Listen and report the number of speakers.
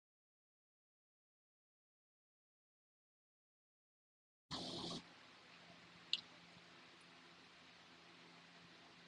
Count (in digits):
0